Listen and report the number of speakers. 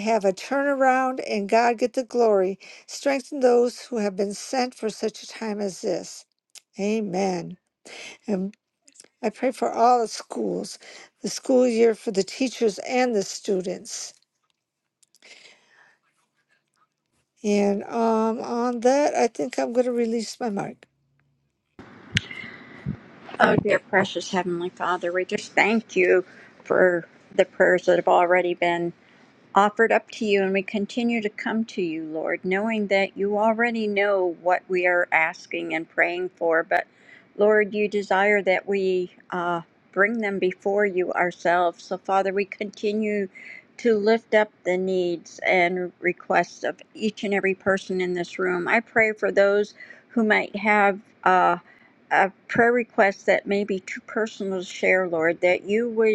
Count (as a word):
two